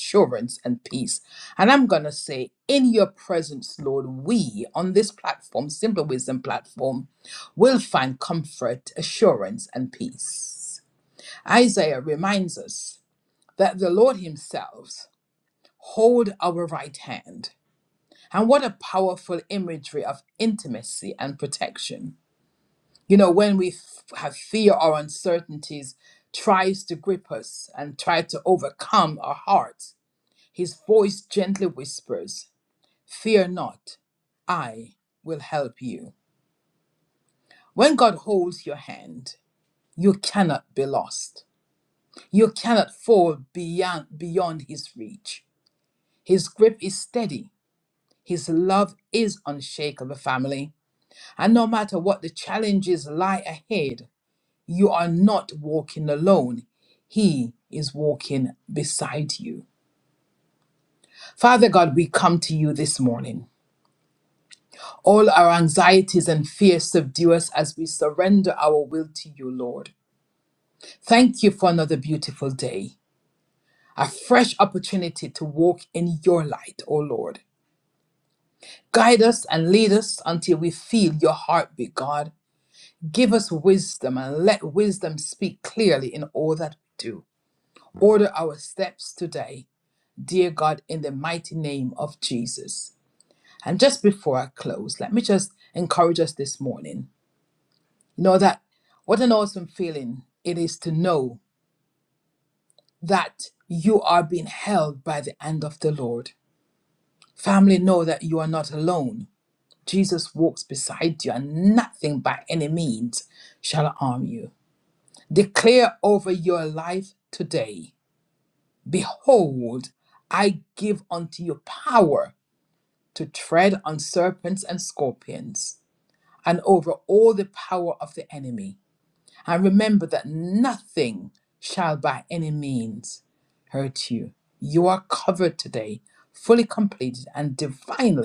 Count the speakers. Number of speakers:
1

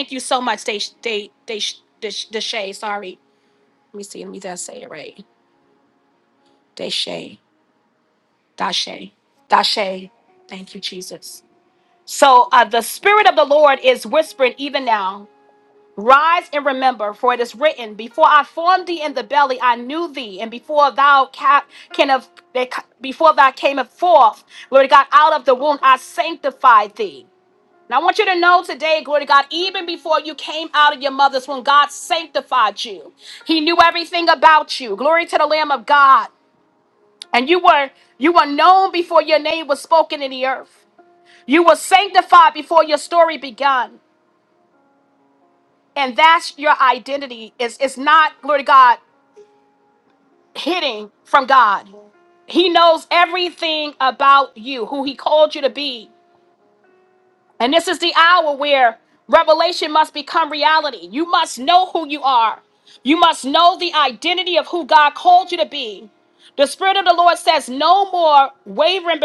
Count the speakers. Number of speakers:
1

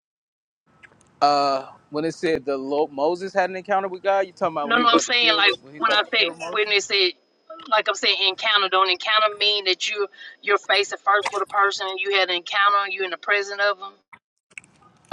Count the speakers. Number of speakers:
2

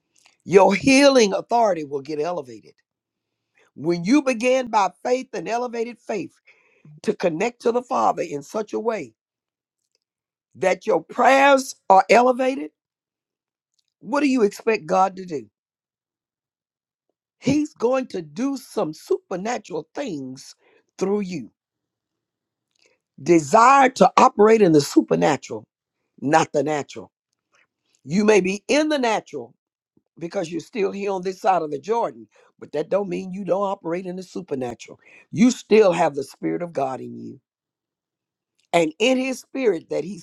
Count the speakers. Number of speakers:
1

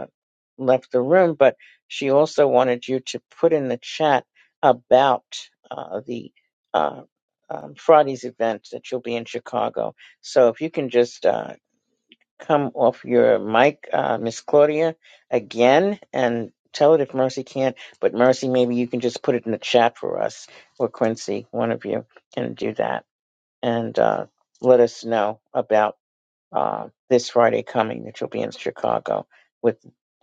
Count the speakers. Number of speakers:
1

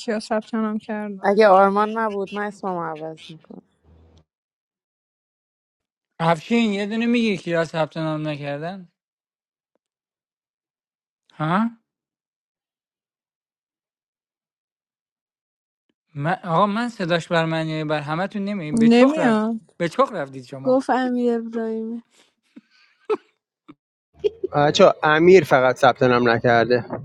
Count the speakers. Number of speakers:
5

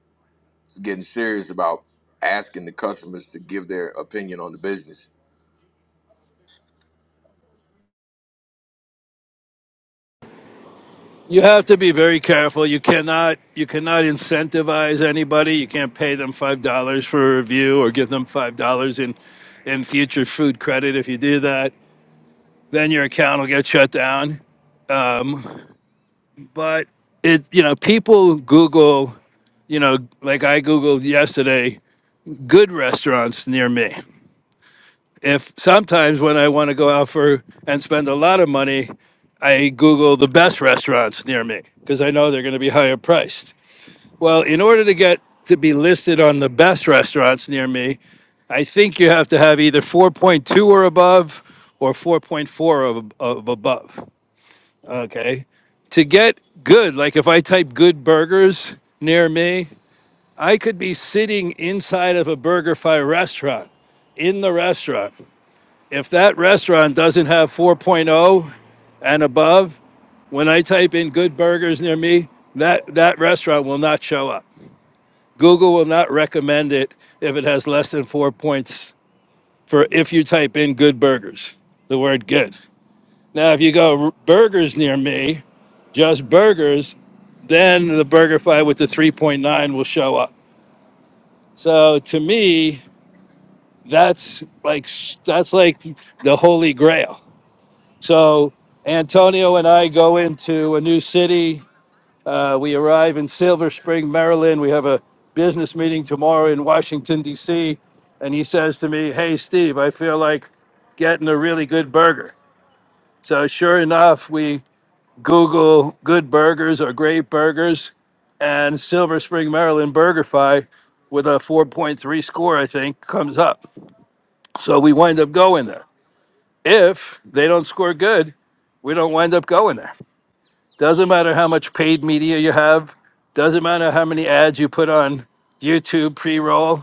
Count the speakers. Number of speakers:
2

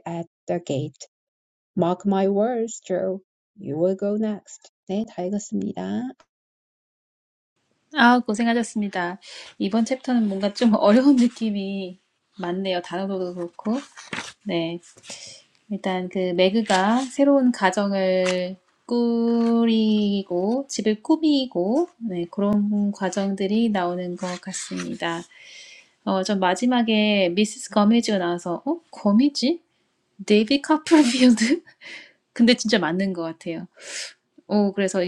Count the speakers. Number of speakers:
2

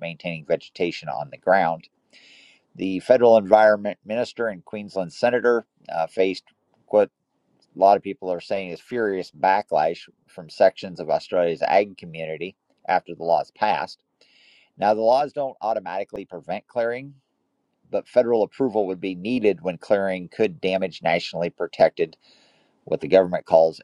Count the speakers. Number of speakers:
1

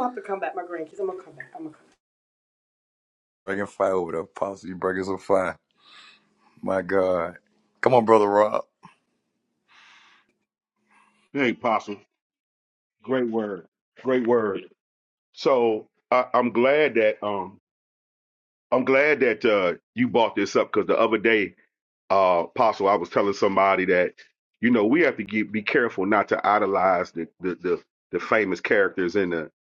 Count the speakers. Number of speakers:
3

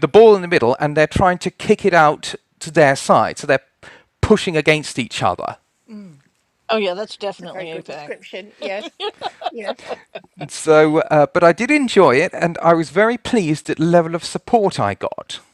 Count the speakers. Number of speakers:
3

